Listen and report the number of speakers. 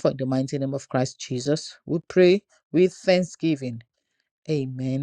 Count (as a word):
one